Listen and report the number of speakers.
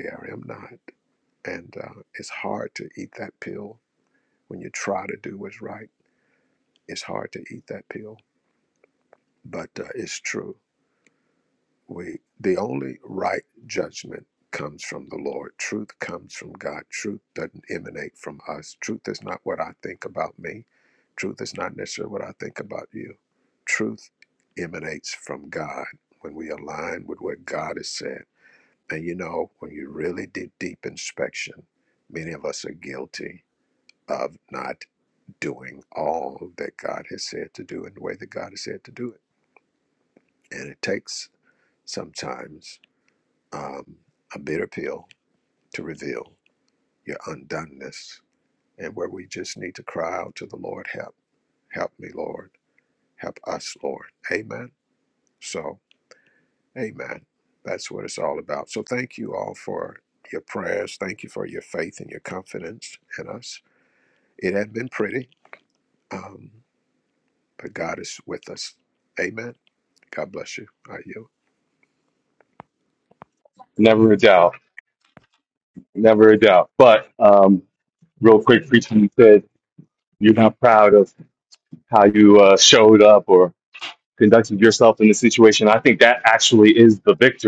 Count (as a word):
two